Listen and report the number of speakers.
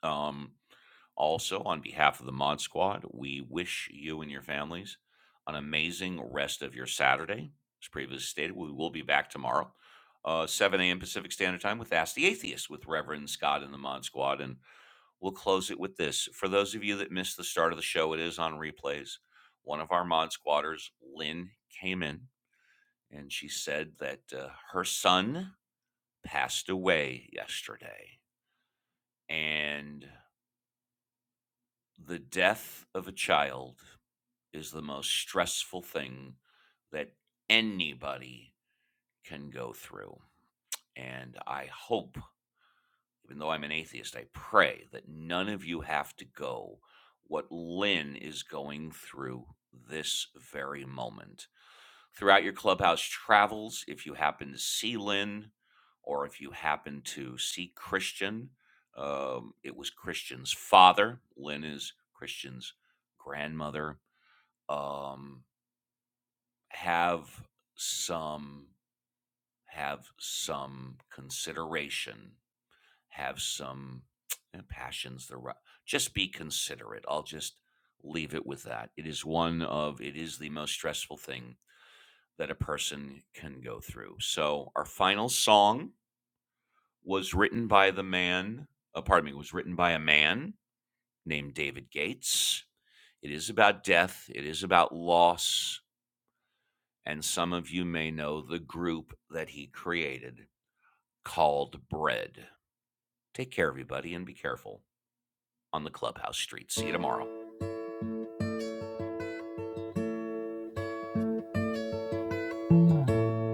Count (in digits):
1